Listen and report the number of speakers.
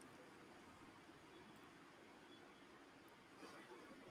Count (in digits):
0